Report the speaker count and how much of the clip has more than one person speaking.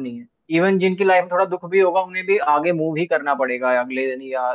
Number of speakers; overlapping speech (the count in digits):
1, no overlap